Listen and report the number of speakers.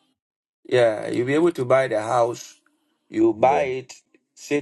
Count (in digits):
1